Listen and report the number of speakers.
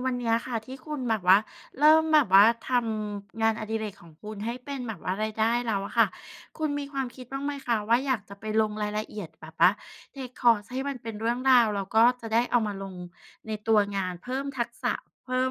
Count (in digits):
1